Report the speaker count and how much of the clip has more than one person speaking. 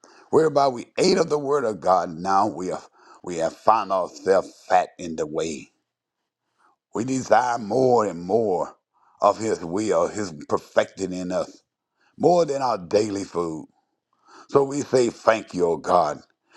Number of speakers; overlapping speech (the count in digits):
1, no overlap